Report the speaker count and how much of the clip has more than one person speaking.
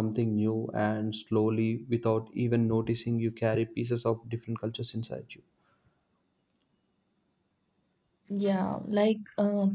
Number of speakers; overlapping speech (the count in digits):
2, no overlap